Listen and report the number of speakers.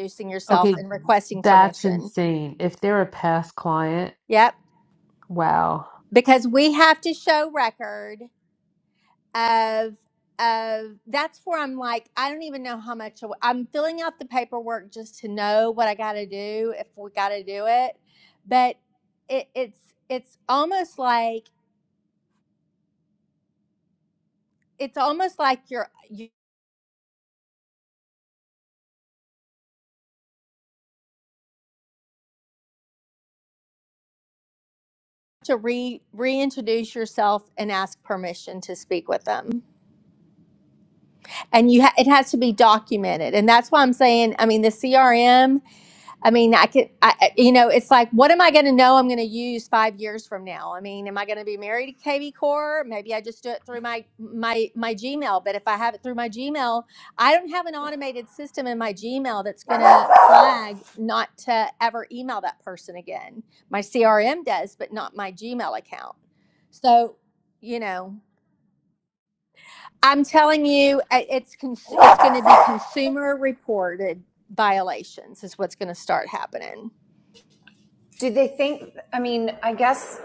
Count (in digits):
3